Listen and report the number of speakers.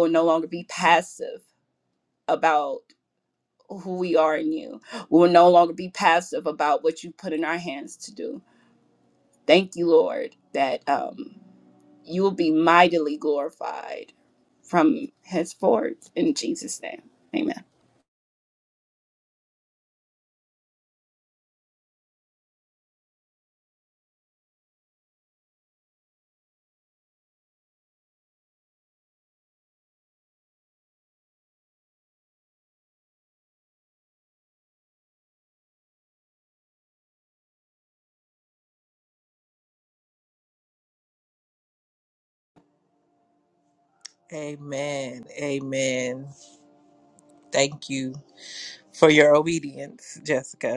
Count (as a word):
two